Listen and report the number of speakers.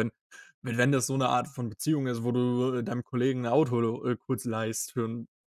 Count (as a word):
one